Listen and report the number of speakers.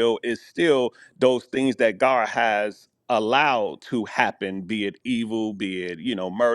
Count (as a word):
one